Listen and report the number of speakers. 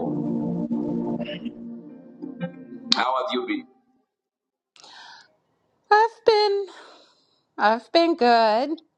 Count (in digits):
2